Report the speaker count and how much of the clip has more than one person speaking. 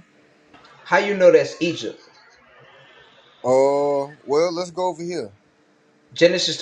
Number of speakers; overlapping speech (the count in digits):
2, no overlap